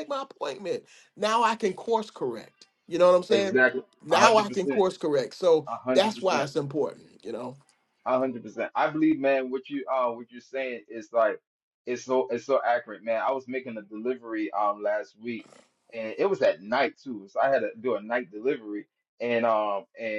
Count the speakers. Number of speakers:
2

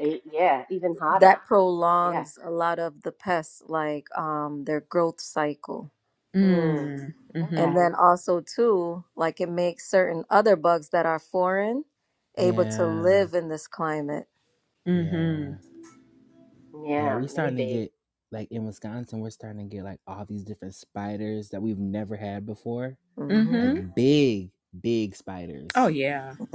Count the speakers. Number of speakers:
4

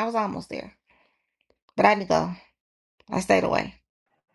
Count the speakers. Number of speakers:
1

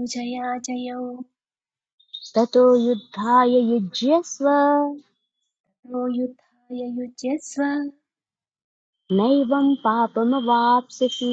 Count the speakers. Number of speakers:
2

